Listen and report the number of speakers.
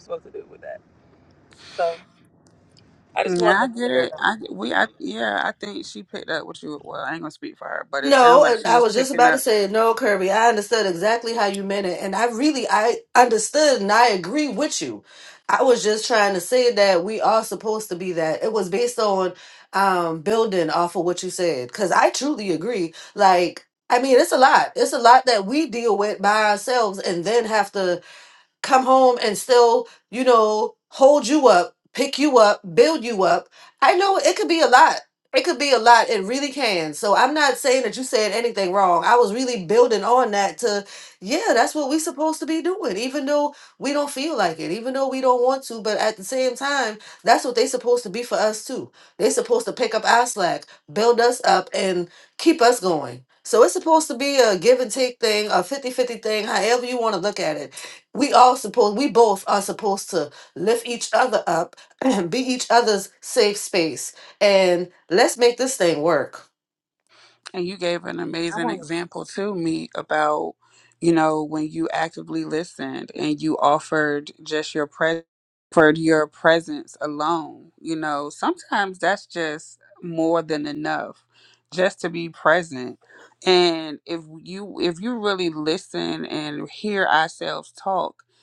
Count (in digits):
3